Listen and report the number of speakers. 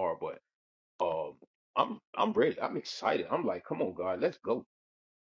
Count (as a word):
one